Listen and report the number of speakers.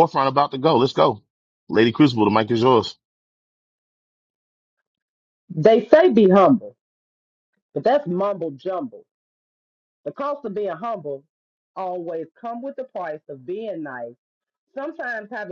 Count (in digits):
2